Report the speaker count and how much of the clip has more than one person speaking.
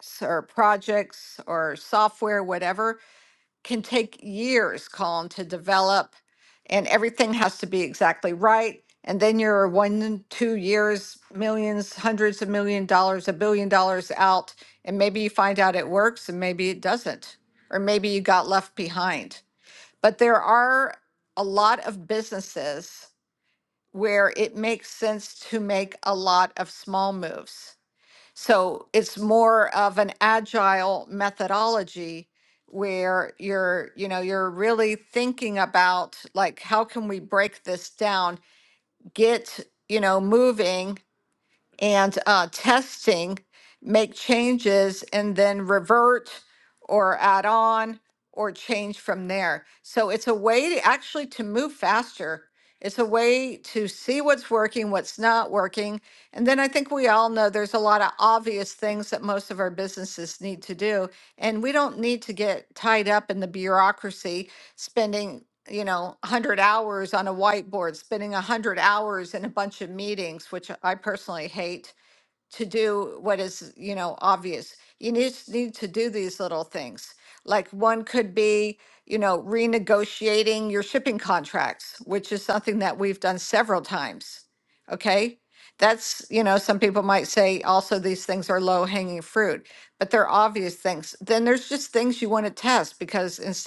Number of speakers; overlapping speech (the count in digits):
1, no overlap